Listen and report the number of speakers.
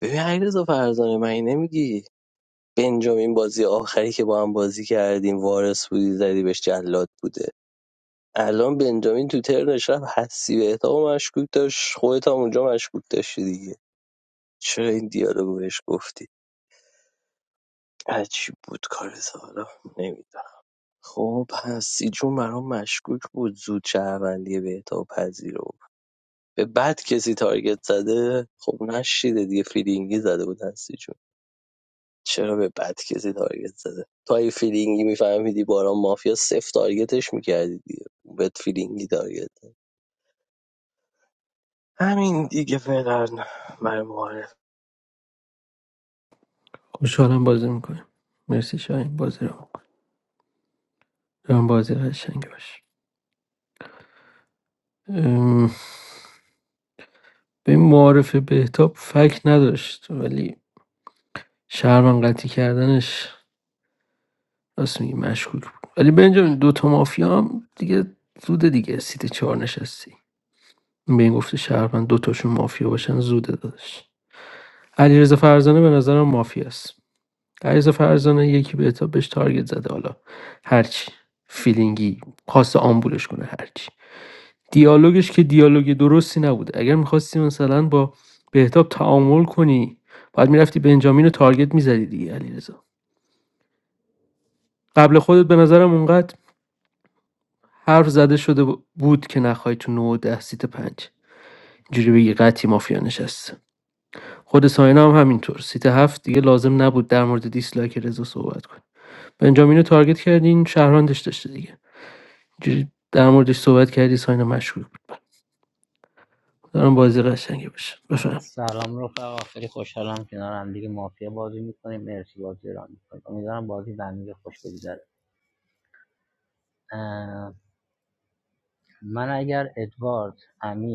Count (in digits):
3